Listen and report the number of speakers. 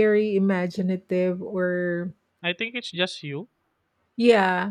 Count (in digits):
2